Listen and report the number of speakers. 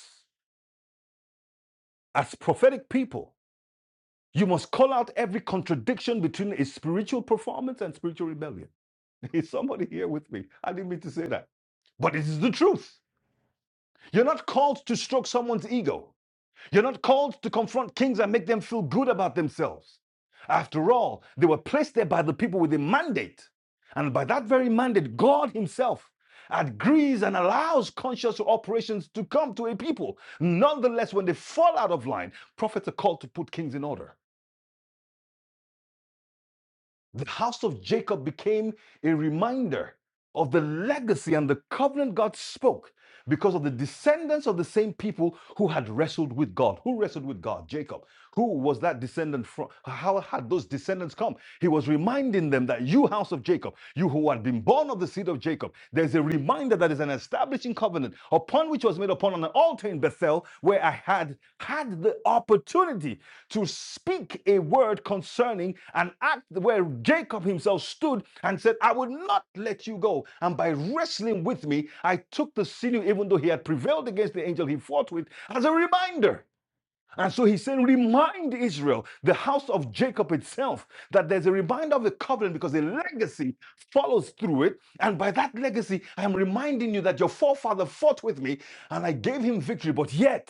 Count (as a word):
one